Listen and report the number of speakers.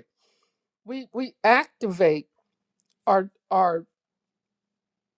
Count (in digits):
1